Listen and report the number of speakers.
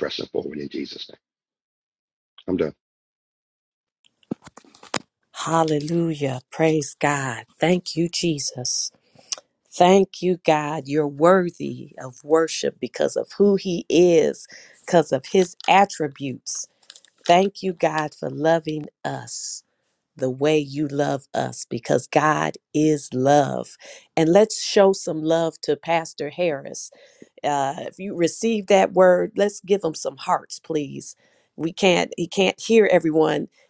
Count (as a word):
two